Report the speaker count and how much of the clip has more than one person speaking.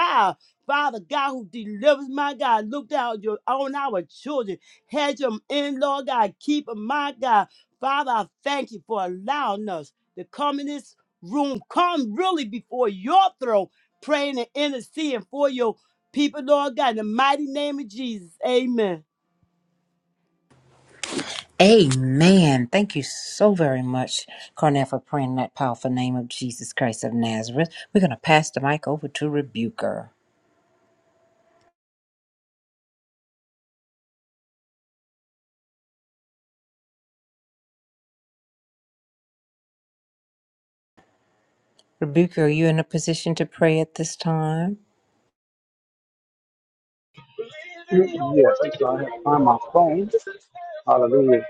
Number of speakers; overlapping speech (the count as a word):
three, no overlap